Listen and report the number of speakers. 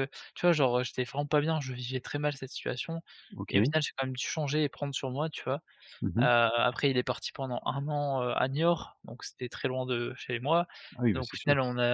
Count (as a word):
two